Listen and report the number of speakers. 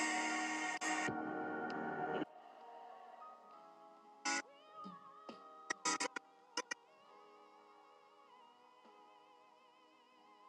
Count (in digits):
0